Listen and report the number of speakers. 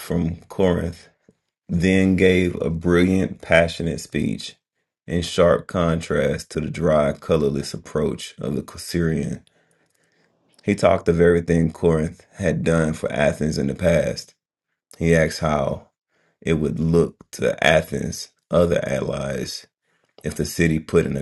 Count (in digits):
1